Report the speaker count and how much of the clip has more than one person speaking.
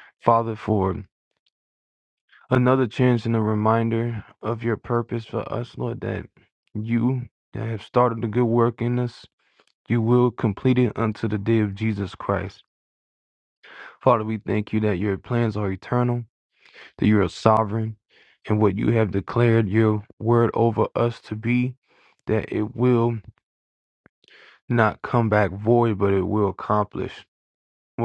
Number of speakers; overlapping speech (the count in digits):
1, no overlap